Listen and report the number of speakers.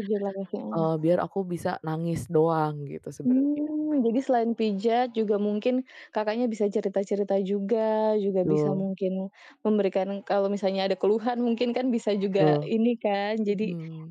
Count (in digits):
2